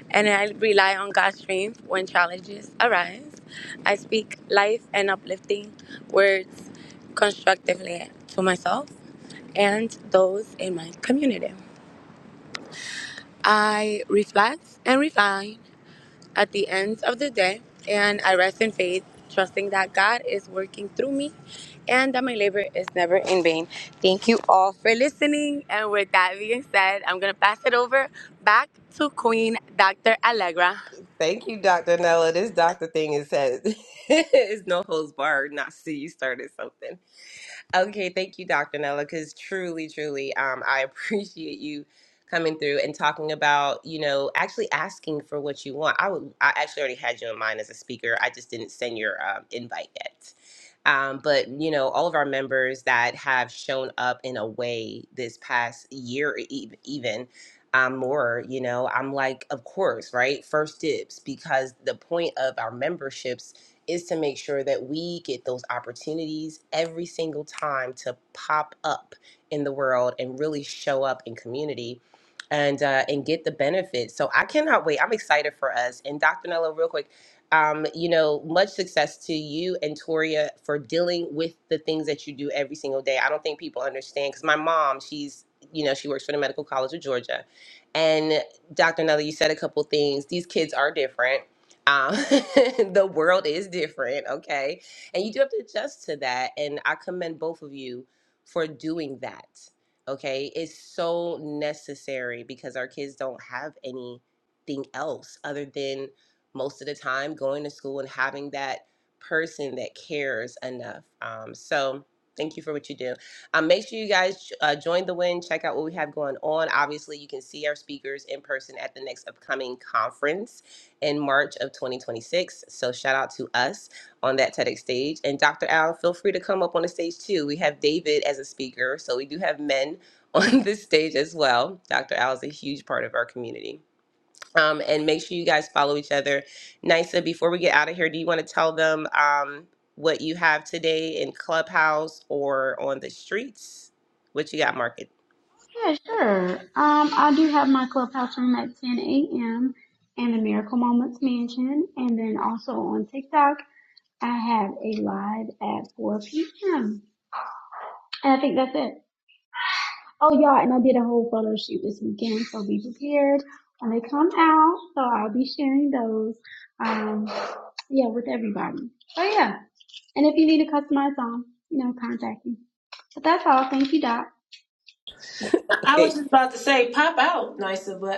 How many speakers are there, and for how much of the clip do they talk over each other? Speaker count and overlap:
four, under 1%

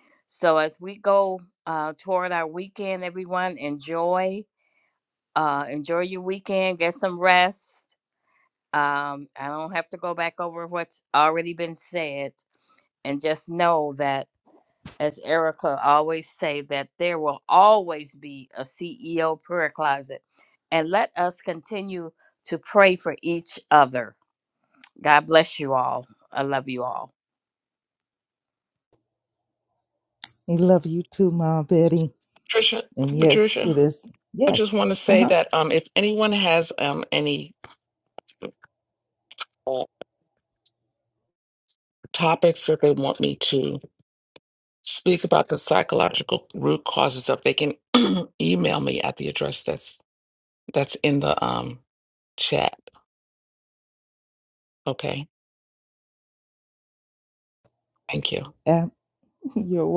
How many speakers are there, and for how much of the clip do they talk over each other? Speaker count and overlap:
three, about 2%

